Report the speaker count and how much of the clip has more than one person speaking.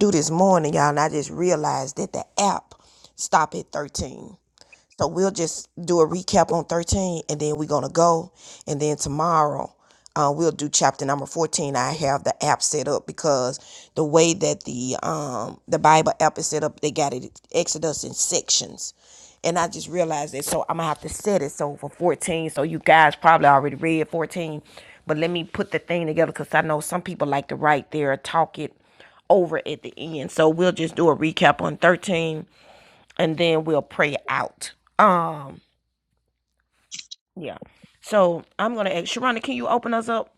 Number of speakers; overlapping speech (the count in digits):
1, no overlap